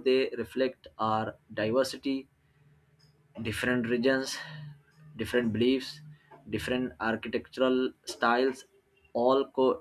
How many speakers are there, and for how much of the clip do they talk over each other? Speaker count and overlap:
one, no overlap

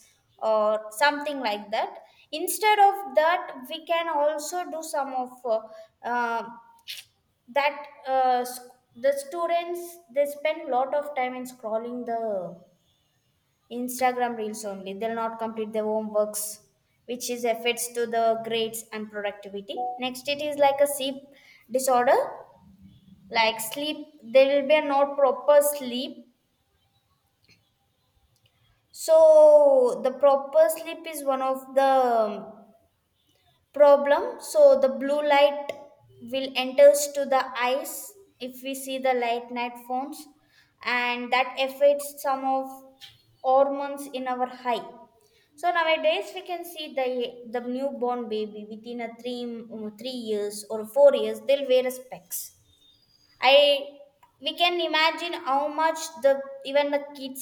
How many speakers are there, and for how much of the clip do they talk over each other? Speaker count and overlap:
one, no overlap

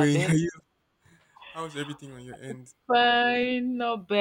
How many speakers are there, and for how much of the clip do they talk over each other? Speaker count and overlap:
two, about 8%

